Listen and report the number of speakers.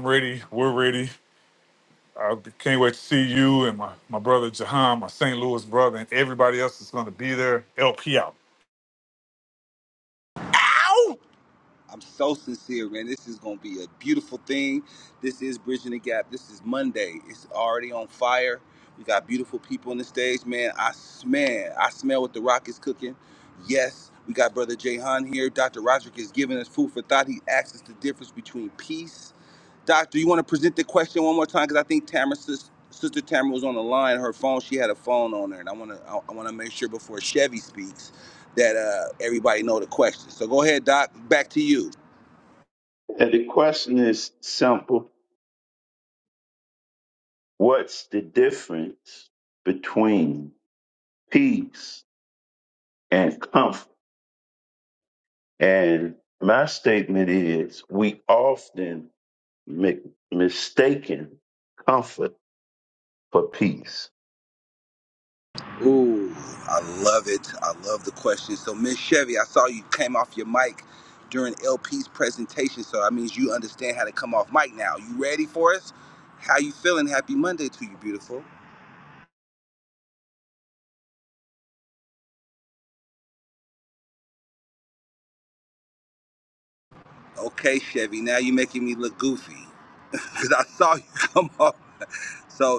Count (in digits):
3